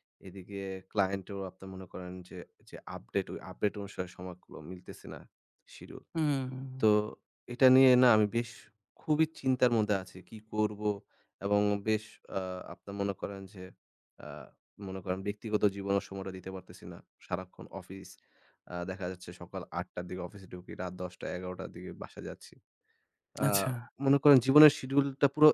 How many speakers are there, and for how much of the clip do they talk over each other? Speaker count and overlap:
two, under 1%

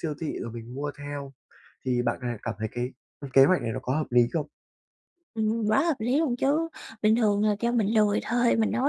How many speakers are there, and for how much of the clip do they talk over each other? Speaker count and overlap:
two, no overlap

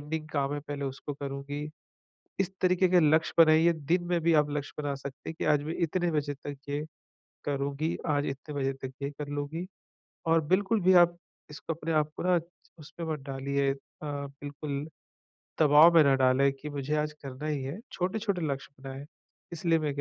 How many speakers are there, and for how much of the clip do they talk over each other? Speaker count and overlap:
one, no overlap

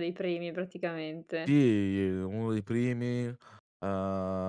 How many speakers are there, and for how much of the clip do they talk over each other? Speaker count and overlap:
two, about 1%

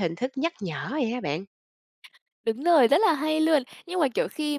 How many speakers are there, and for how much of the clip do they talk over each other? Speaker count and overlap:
two, no overlap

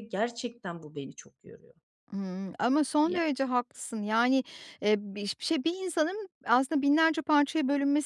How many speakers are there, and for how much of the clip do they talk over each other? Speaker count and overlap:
two, about 2%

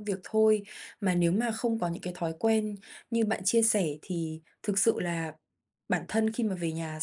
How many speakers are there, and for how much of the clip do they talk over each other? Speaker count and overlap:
one, no overlap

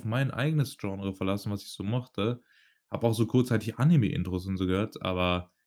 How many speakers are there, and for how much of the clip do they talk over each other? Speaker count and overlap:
one, no overlap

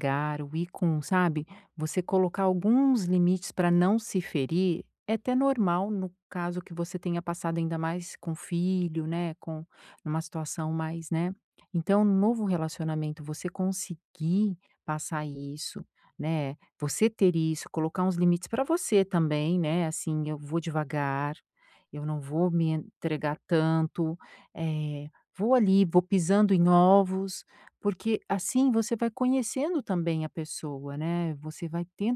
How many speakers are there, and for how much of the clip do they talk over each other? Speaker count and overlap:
one, no overlap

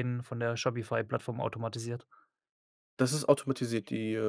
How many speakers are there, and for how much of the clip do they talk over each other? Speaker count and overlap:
two, no overlap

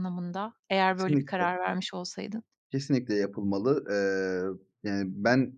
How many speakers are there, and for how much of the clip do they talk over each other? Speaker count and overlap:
two, about 9%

